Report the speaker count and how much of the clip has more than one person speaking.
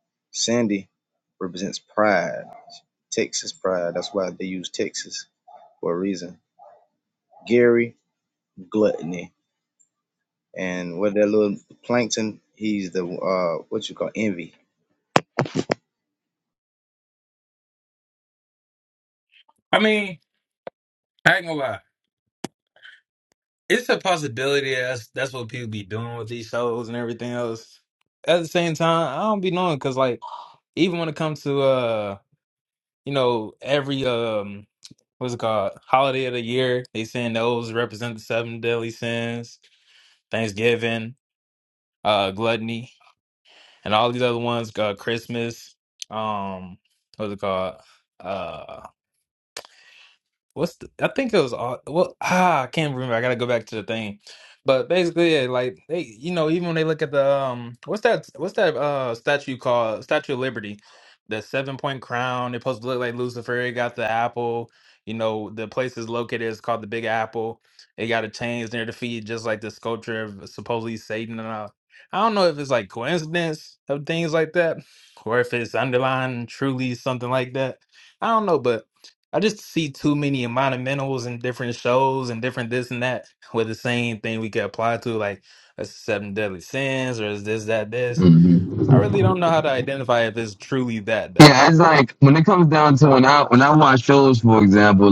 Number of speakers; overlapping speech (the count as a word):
three, about 1%